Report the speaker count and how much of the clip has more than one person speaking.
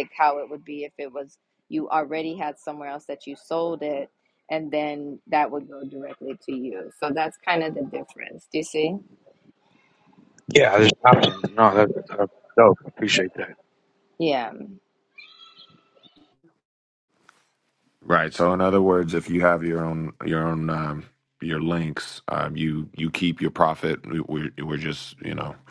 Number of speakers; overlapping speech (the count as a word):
three, no overlap